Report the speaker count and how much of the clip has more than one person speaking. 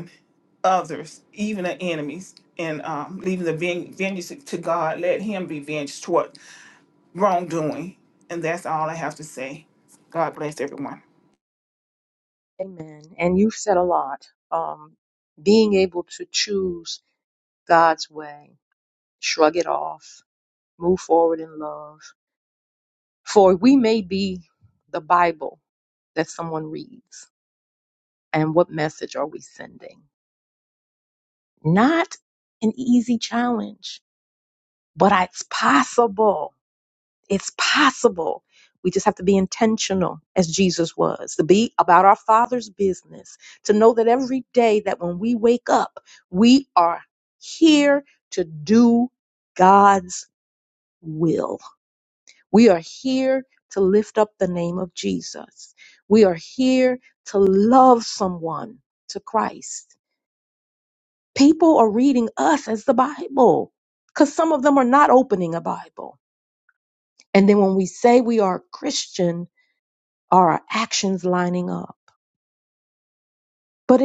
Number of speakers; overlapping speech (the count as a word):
two, no overlap